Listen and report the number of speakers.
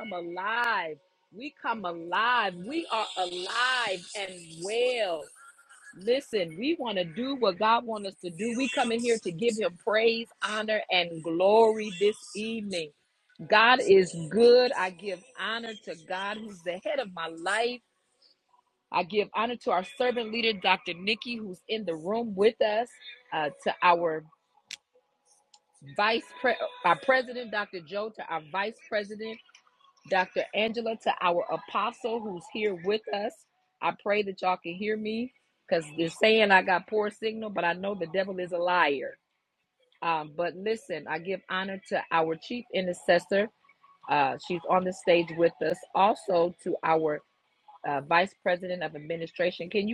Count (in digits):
1